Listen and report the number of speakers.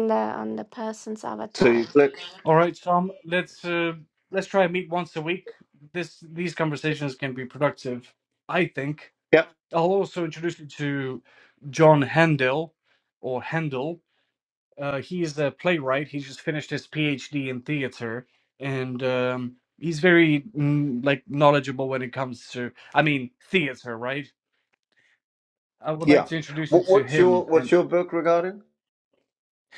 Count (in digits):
3